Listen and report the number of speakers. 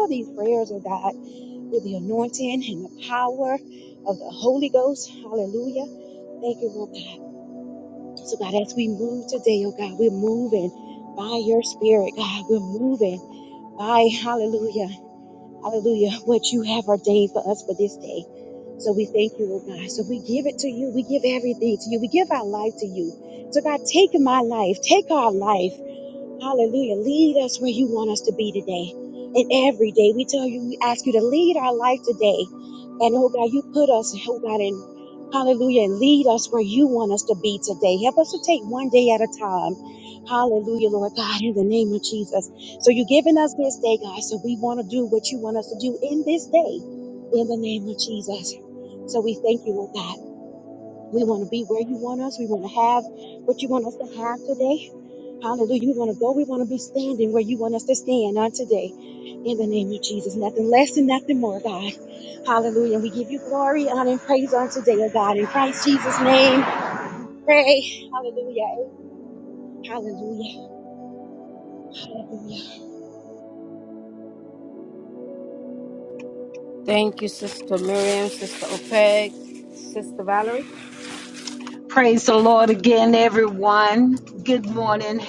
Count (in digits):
3